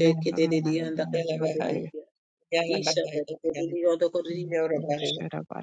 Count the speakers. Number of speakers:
3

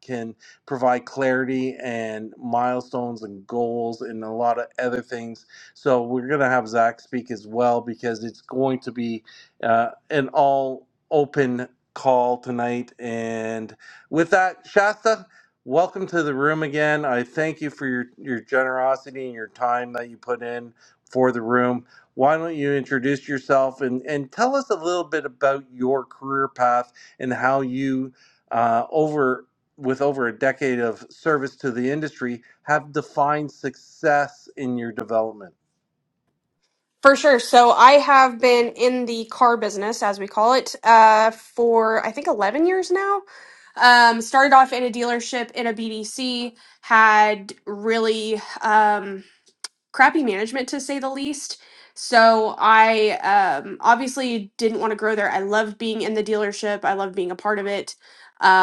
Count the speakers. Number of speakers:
2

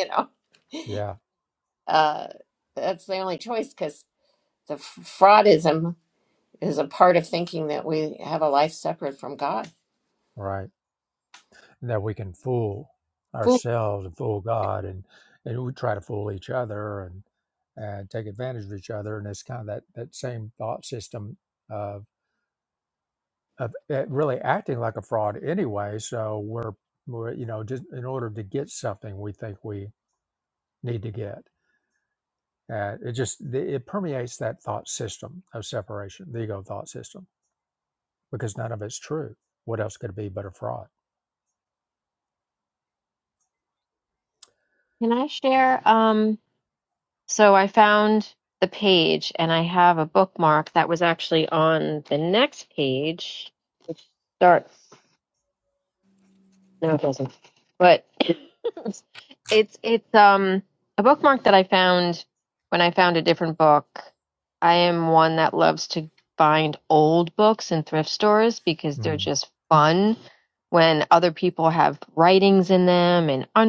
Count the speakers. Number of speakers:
3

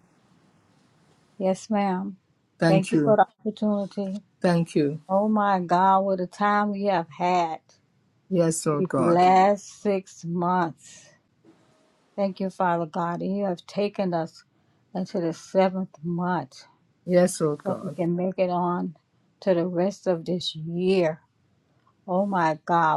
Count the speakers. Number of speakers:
2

